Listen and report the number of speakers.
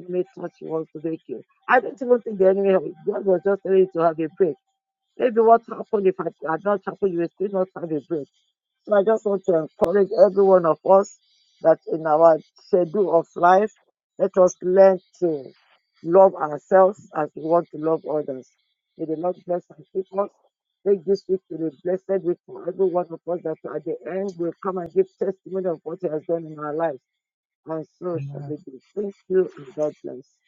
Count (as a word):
one